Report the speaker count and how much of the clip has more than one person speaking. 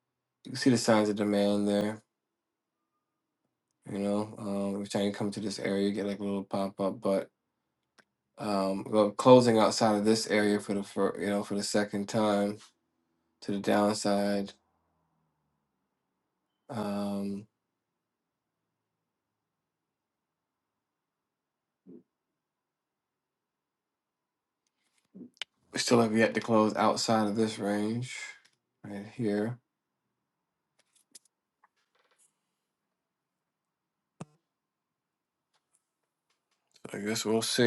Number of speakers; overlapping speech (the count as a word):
one, no overlap